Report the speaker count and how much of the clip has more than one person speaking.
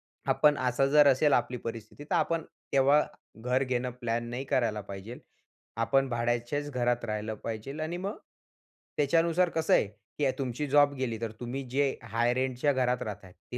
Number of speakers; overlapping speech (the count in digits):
1, no overlap